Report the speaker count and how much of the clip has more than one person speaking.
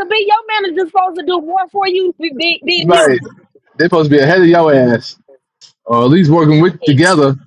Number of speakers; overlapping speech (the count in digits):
2, about 5%